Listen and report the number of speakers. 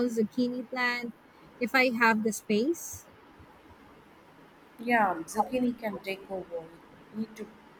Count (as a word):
two